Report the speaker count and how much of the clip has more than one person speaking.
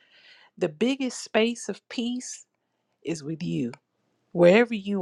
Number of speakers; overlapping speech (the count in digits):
1, no overlap